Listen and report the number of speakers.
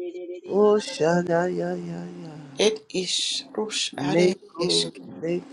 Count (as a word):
three